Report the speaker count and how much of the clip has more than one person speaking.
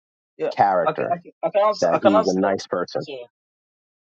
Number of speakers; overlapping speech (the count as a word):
two, about 34%